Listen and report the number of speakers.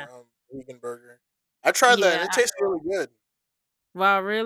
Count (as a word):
two